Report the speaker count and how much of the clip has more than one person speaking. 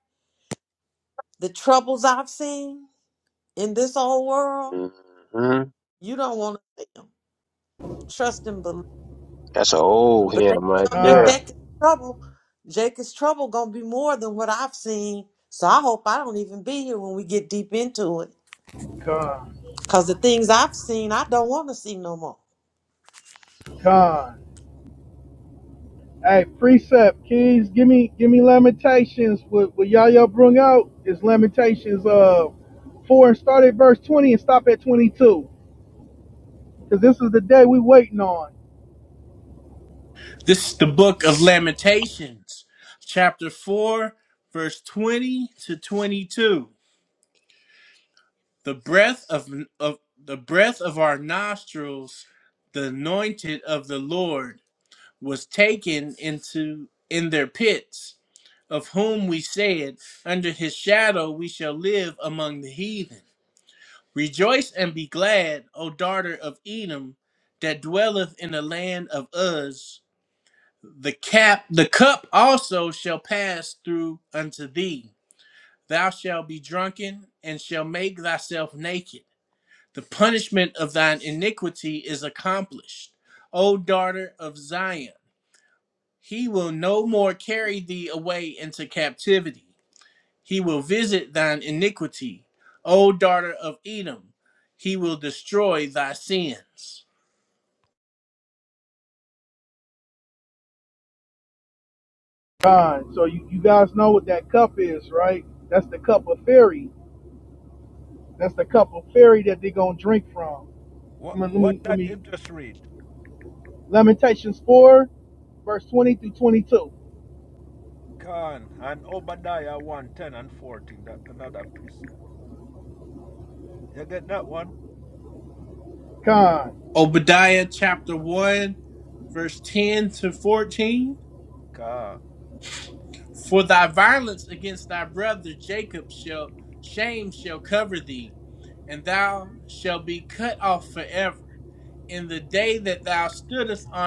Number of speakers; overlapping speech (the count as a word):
five, about 1%